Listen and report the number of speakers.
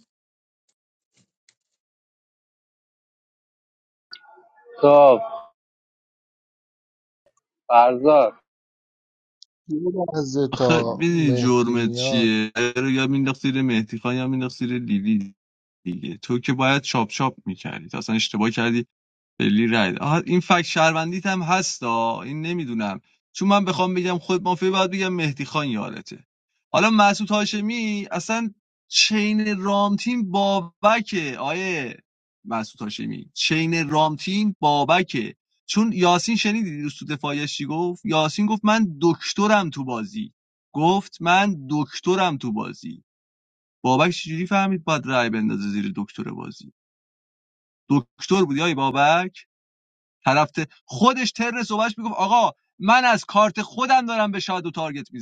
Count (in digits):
3